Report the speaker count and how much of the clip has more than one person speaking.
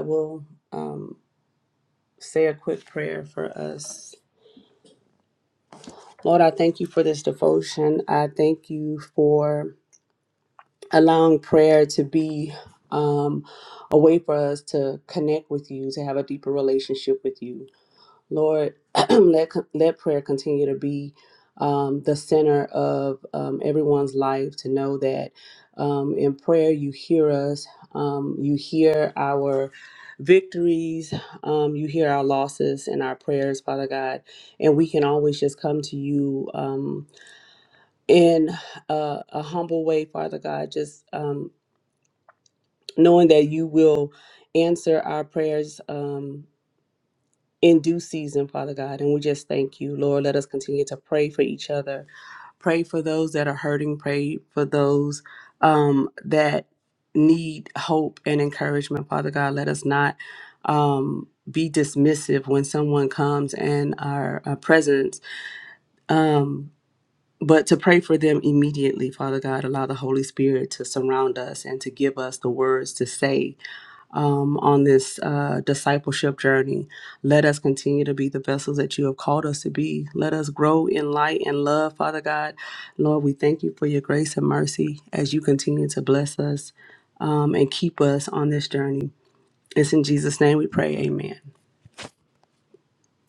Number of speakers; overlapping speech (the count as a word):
one, no overlap